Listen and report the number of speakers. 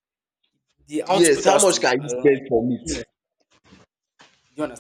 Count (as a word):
two